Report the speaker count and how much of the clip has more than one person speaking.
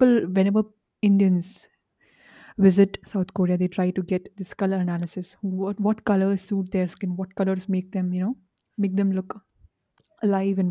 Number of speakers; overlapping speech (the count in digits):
1, no overlap